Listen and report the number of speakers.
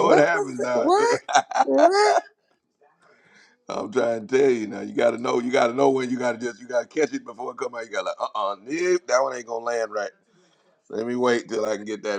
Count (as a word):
two